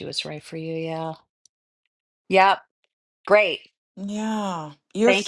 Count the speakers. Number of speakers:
two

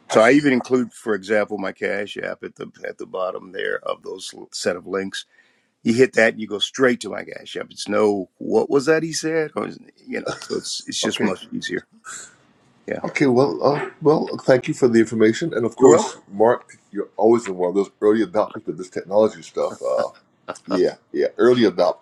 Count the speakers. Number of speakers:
two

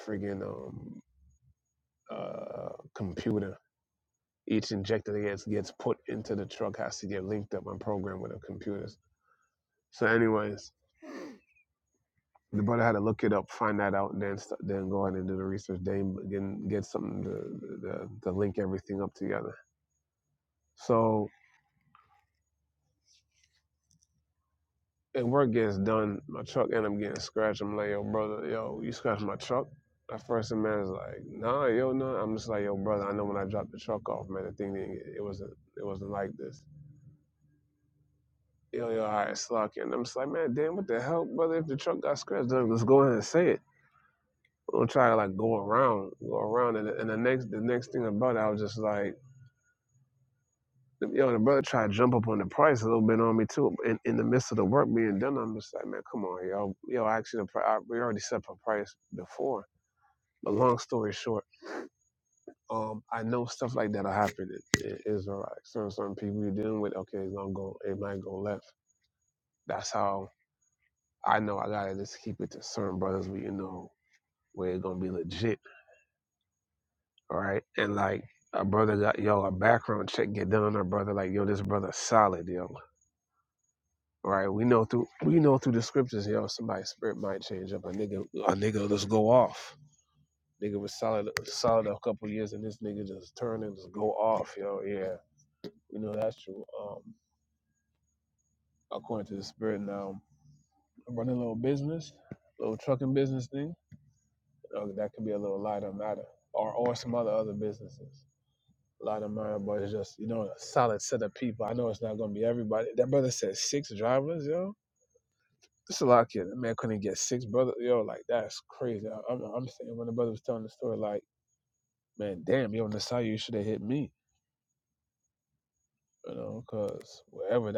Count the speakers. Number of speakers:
one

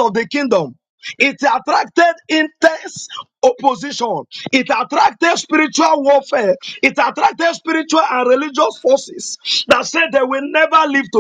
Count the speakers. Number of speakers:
one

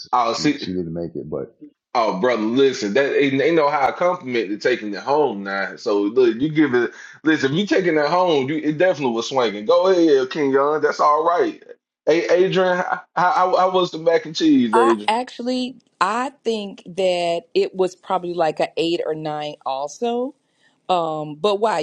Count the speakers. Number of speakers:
three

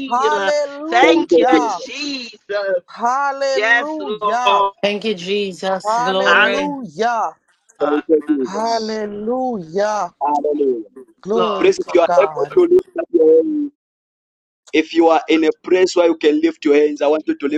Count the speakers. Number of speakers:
four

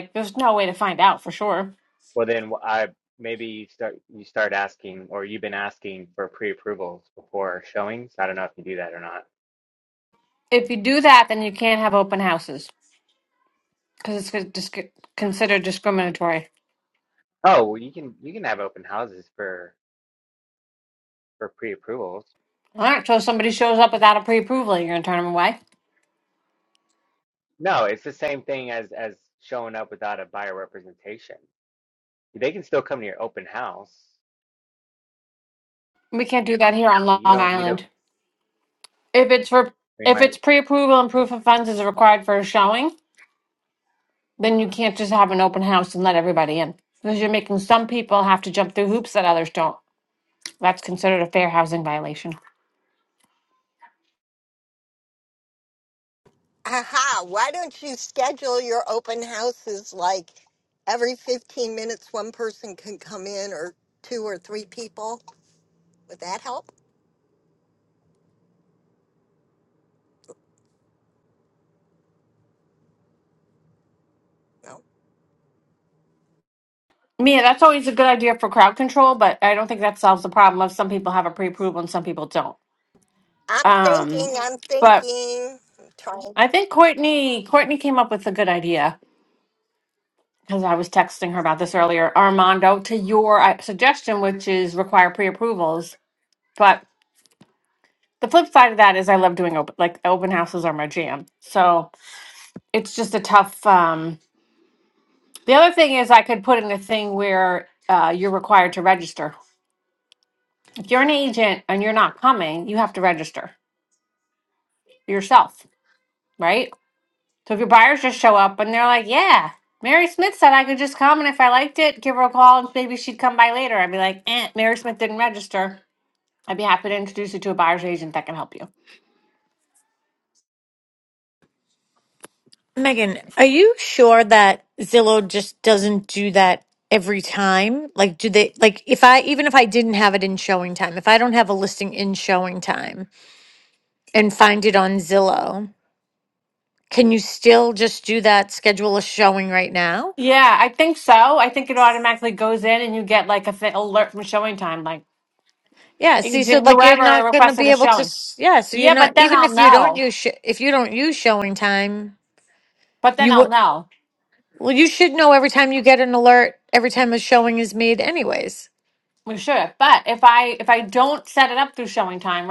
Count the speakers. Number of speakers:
four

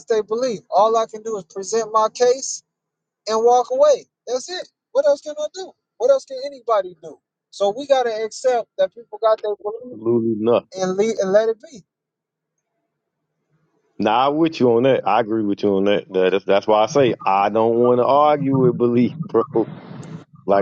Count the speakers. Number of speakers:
two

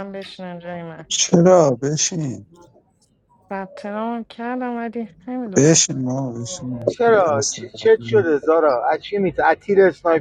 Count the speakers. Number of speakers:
three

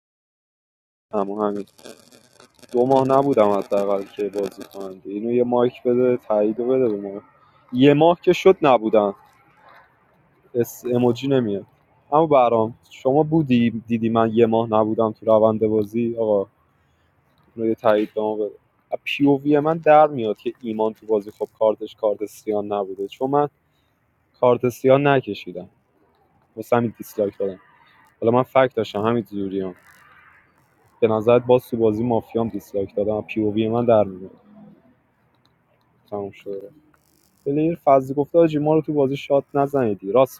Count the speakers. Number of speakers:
one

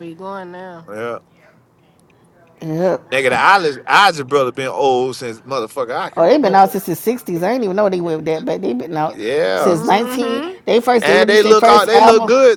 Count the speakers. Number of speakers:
three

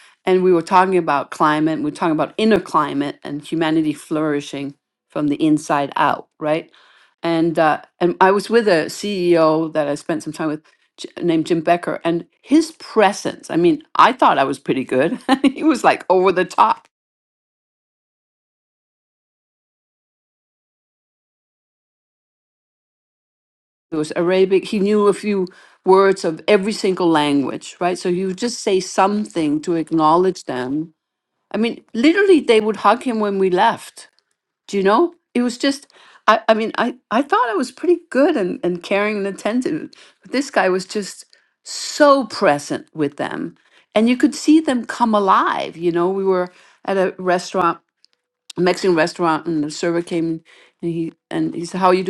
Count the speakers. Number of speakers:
one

